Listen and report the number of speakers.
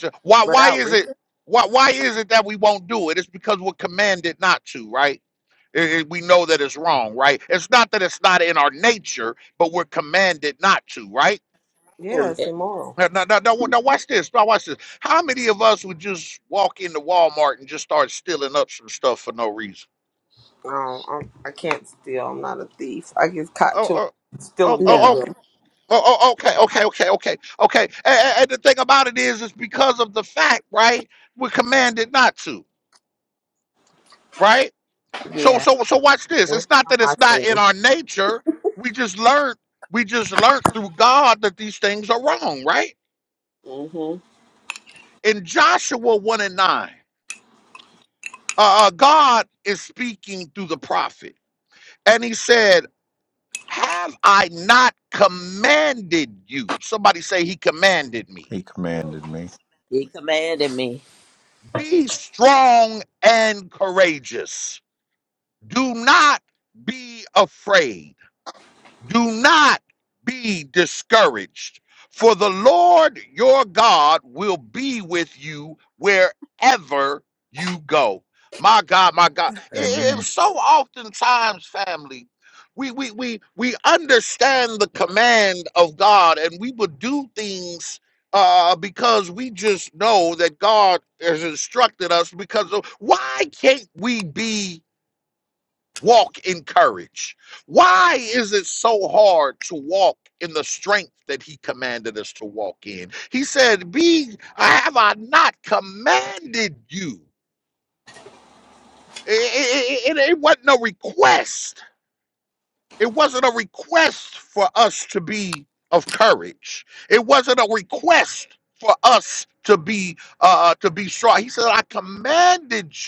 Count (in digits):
4